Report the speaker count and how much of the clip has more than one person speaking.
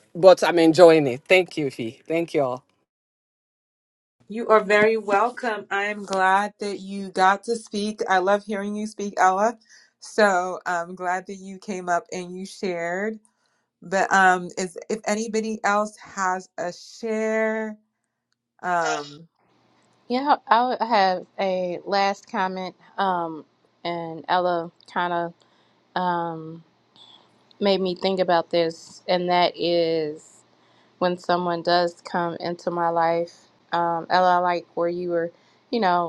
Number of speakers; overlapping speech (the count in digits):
3, no overlap